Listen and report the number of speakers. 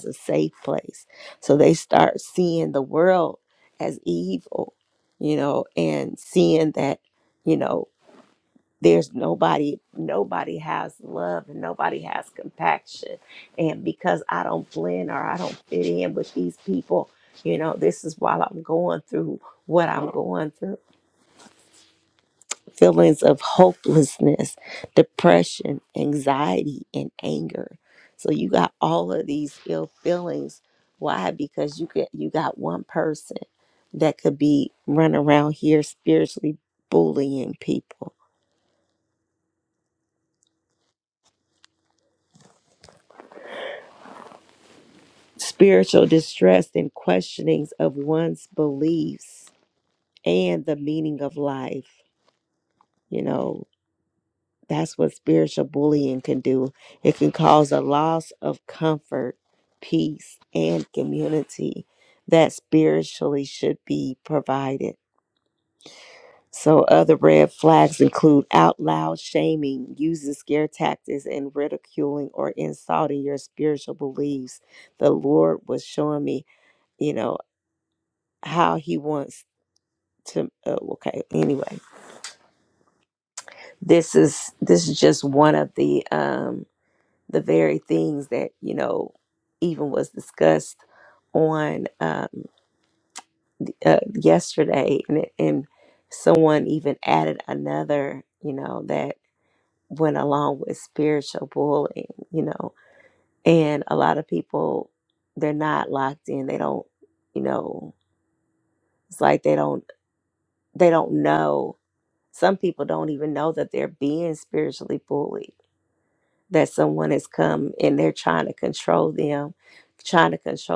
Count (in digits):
1